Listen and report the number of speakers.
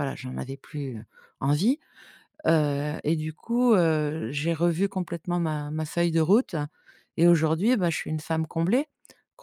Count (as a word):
one